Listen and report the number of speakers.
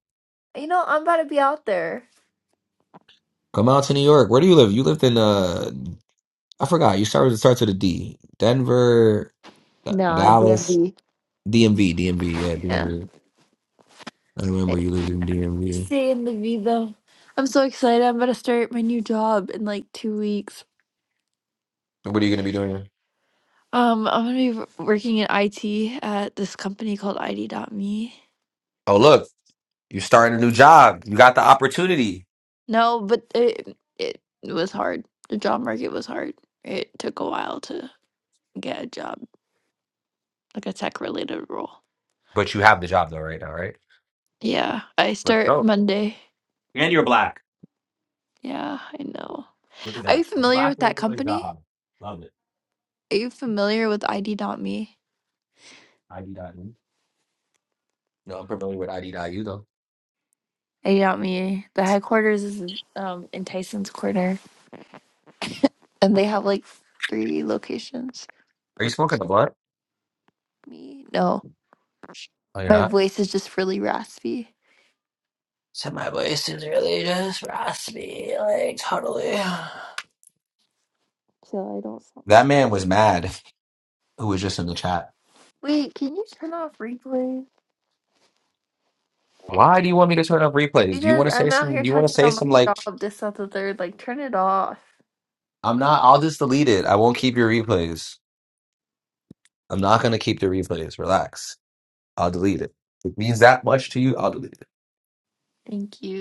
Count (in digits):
2